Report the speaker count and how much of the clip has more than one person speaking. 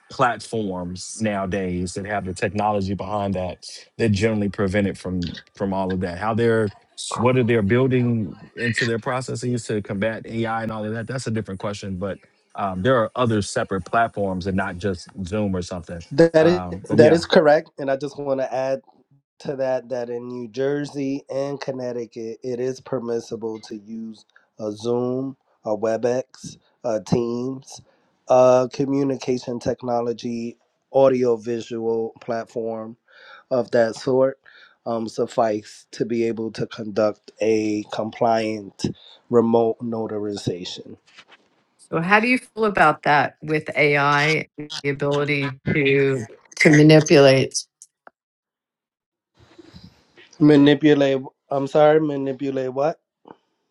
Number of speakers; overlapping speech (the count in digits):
3, about 2%